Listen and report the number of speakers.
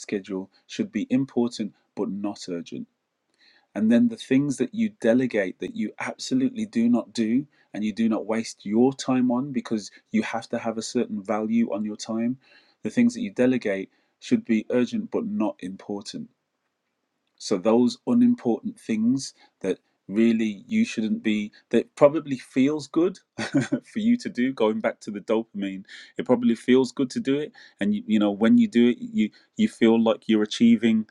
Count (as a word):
one